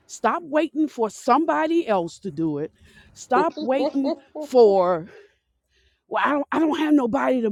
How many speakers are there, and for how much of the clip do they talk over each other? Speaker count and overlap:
1, no overlap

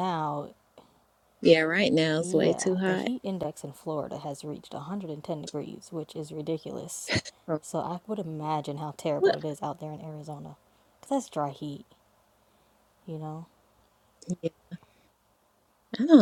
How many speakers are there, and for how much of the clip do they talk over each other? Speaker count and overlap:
2, about 6%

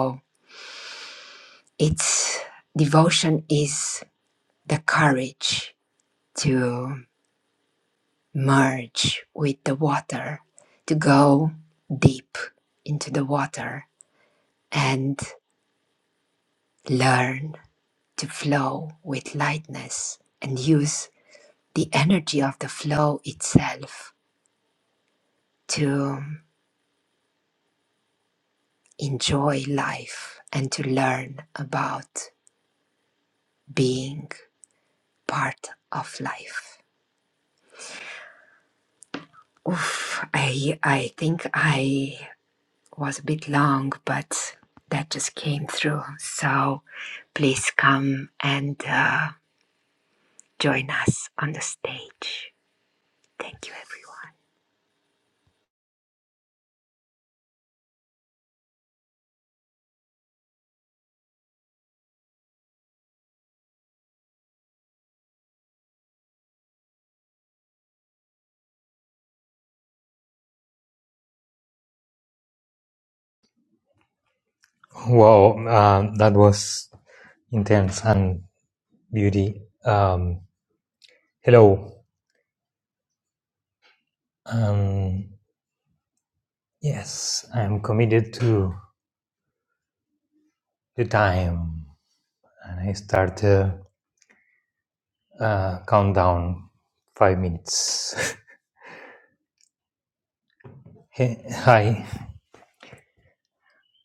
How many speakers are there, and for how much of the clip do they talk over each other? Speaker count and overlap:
2, no overlap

